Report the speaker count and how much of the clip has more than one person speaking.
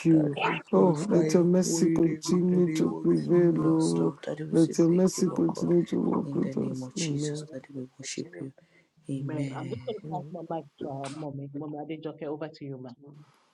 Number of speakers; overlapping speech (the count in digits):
3, about 52%